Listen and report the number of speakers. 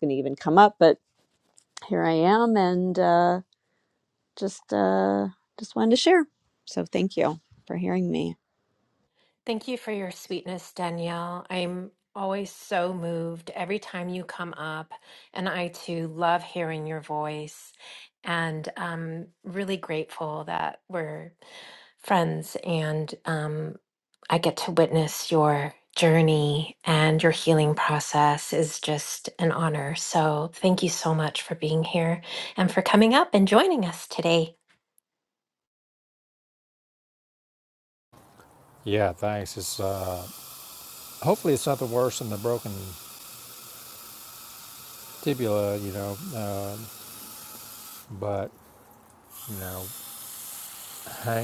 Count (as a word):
three